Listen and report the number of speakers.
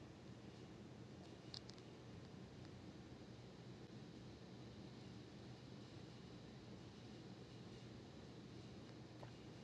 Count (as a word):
zero